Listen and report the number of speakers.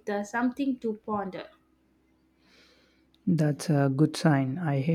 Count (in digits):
2